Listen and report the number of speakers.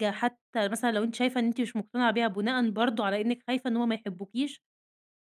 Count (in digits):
1